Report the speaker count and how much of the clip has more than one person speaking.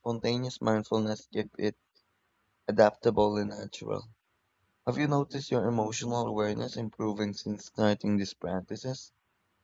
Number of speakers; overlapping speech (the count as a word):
one, no overlap